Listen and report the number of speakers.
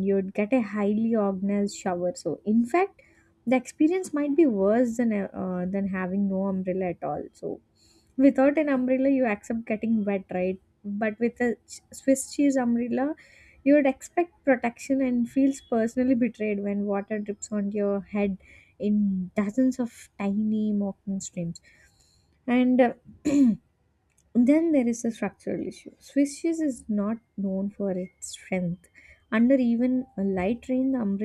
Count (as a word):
one